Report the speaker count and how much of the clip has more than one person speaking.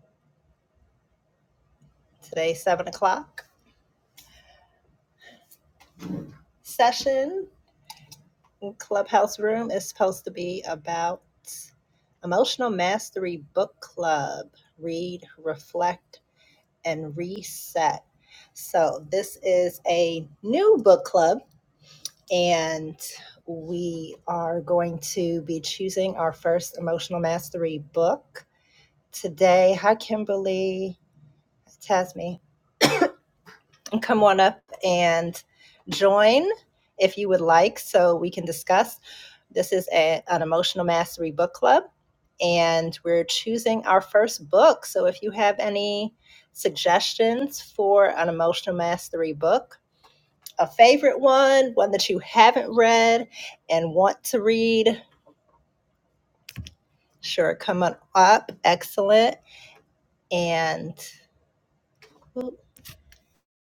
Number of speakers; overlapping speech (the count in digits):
1, no overlap